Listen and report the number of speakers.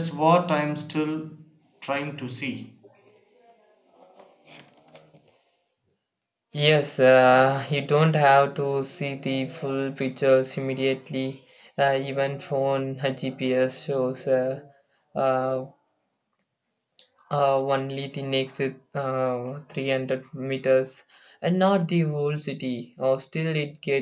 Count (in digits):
2